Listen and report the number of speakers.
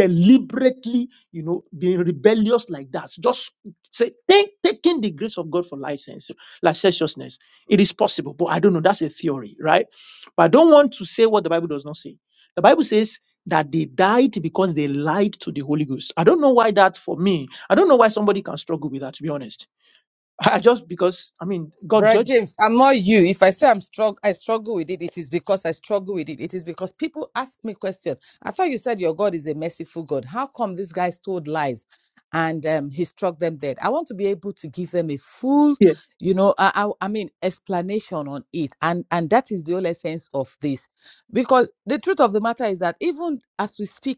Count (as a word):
two